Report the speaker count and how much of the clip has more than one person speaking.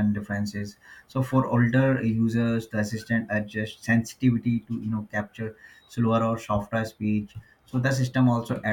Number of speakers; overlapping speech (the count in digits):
1, no overlap